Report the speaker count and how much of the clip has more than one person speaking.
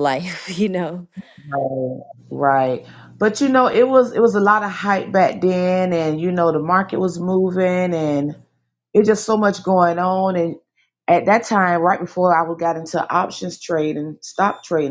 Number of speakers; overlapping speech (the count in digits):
2, no overlap